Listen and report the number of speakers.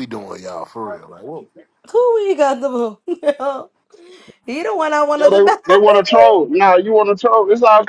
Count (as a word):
three